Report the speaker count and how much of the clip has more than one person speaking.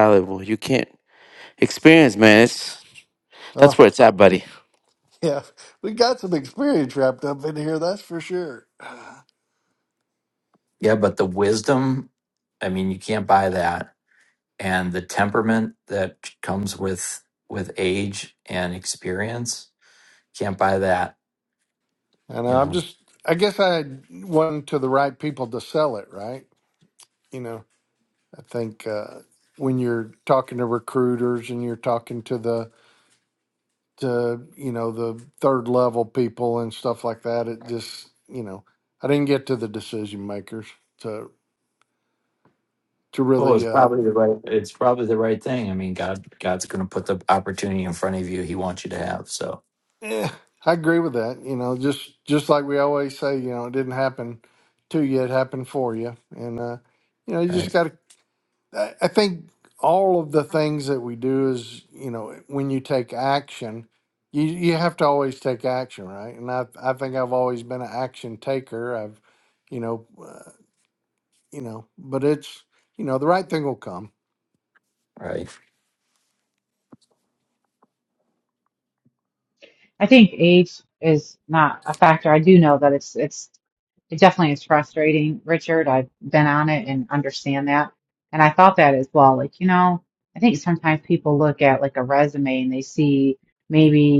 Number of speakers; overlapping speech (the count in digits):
4, about 1%